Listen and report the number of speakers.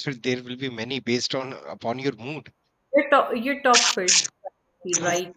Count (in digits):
2